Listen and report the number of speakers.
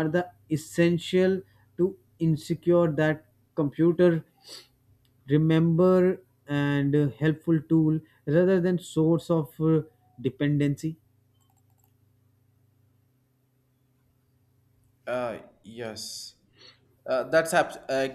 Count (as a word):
two